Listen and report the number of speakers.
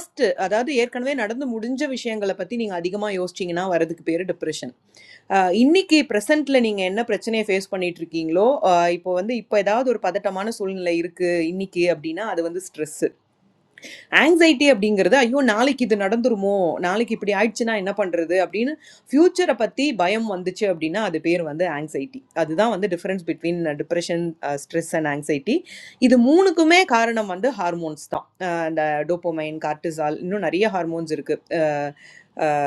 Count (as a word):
one